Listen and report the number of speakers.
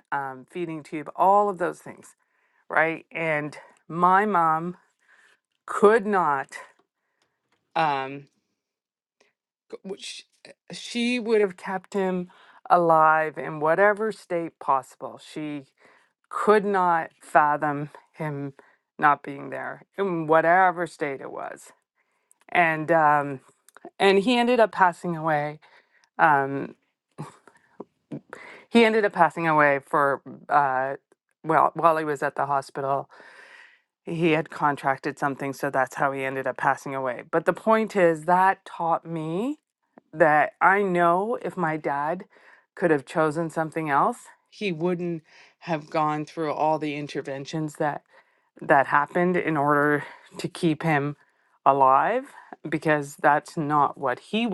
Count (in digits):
1